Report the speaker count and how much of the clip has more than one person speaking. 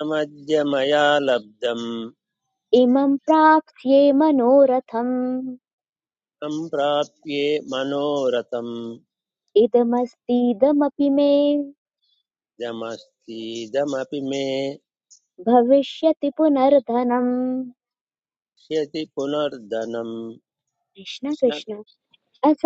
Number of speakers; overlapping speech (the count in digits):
2, no overlap